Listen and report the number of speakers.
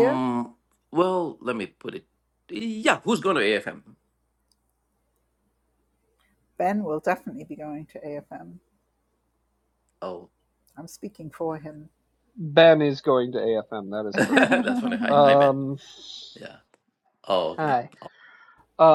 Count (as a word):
three